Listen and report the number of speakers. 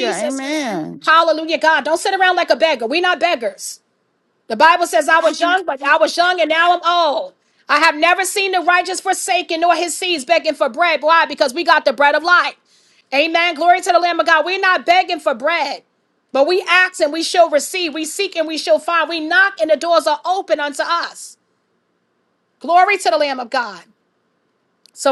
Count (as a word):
two